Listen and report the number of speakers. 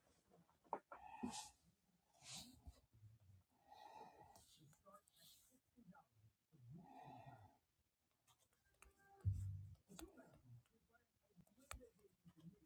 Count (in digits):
0